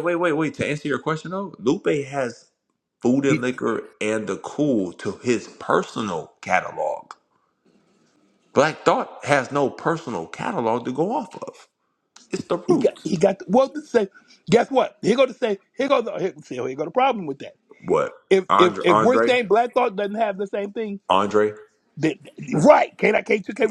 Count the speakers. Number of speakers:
two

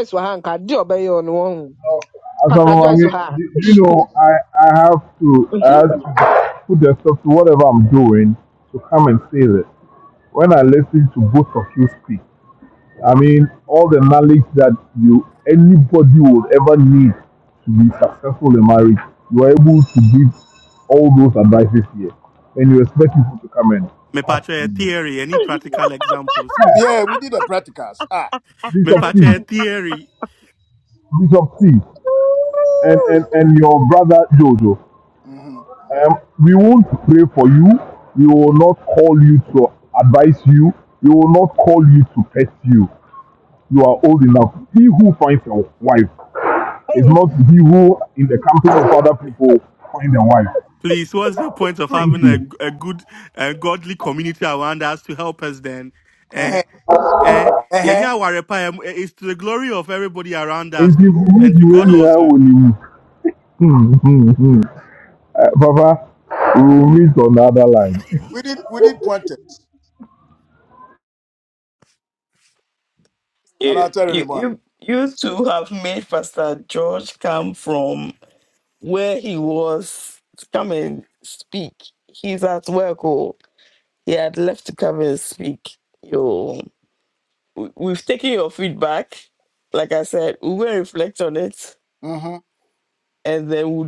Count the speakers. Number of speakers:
five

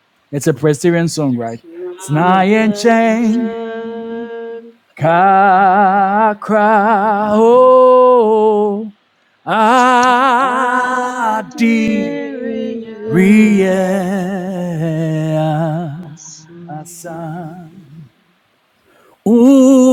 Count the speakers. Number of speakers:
three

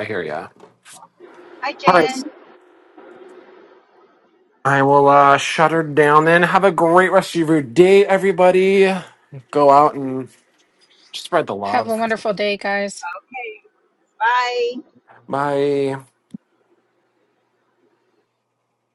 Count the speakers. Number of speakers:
three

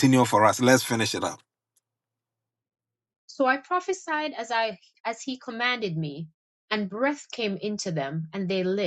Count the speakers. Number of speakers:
two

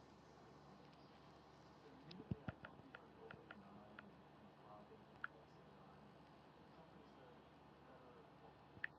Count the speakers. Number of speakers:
zero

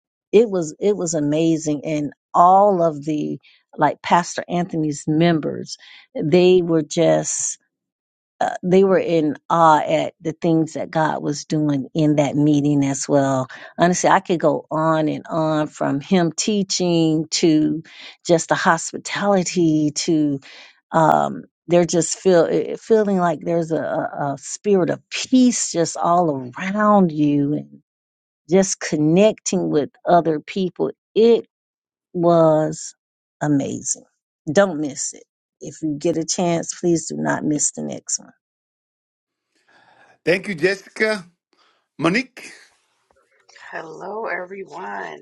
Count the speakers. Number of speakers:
three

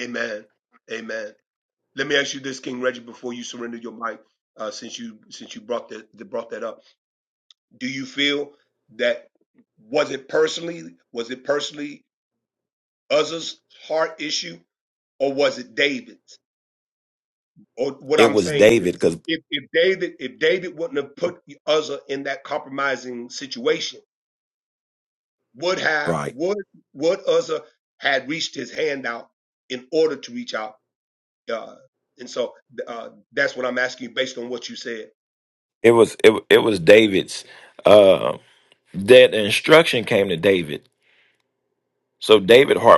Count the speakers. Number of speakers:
two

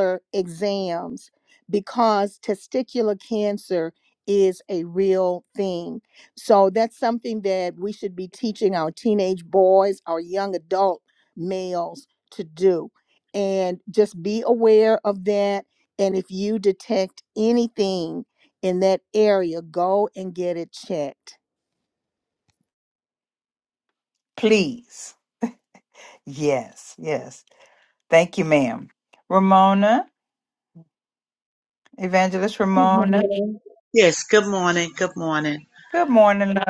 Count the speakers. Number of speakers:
three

